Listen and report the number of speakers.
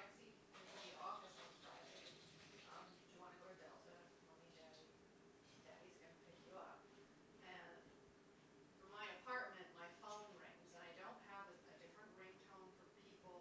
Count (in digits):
1